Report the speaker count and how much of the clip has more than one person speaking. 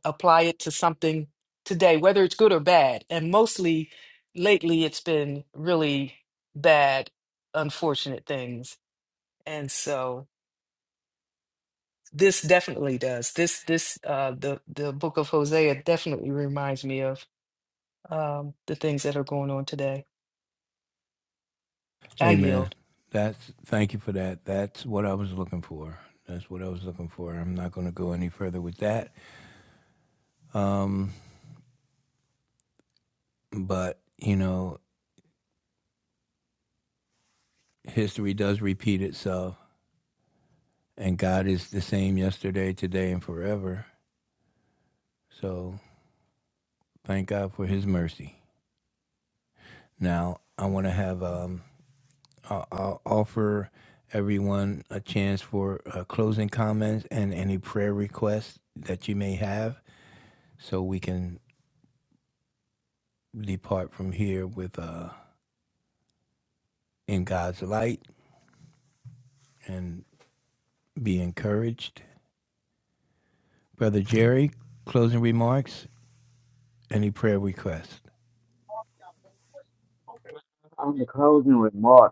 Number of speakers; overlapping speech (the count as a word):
three, about 1%